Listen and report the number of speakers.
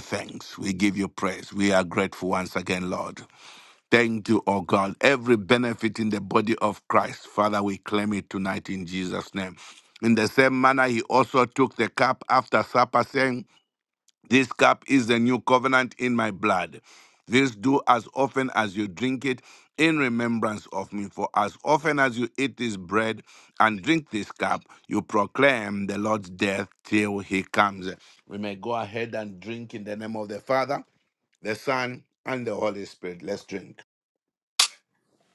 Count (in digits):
1